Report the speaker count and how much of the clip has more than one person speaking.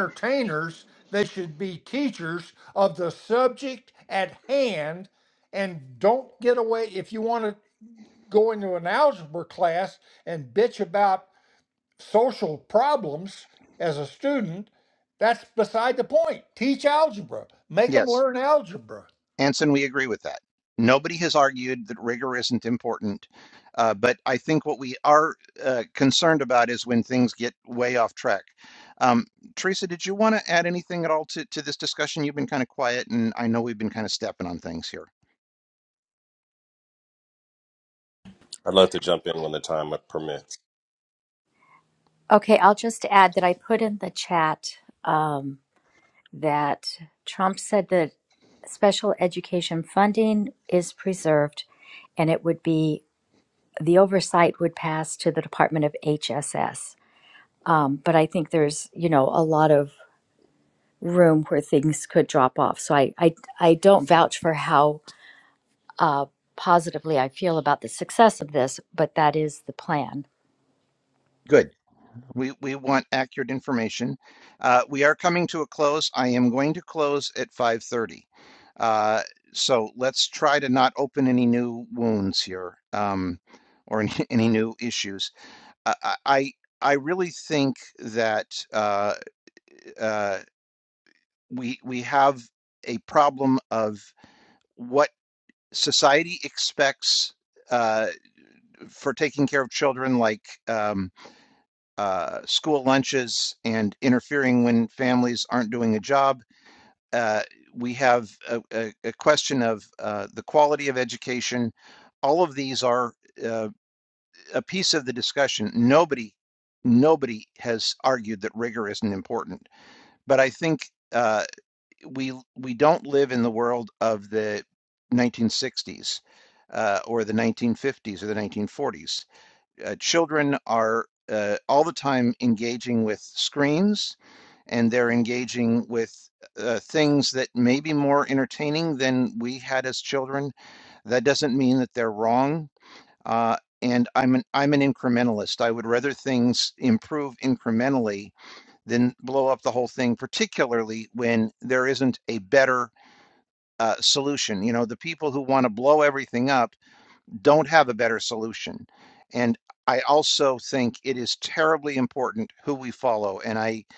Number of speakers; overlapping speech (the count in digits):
4, under 1%